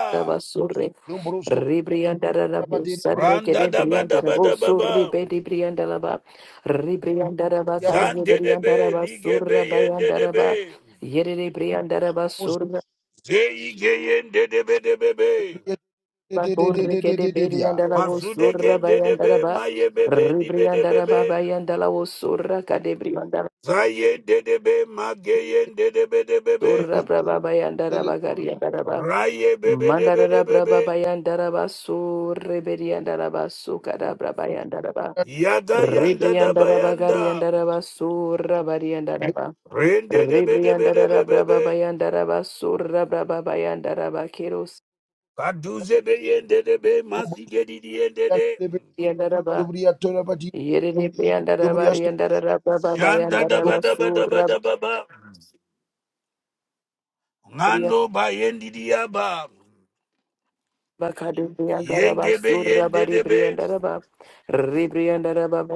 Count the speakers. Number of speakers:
3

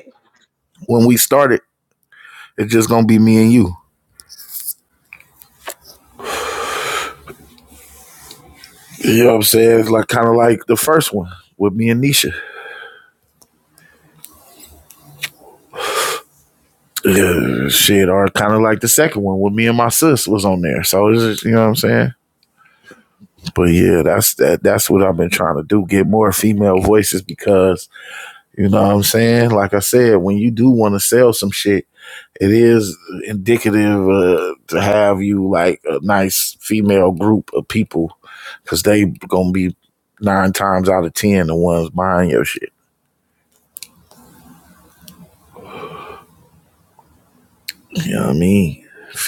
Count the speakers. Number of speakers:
1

